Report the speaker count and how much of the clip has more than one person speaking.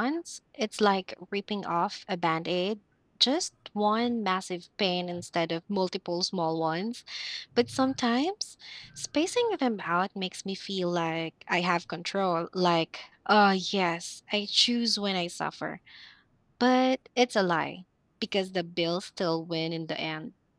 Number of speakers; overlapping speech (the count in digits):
1, no overlap